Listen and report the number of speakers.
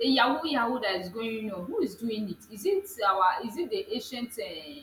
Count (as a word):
one